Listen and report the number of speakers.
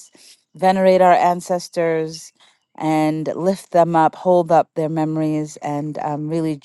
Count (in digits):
1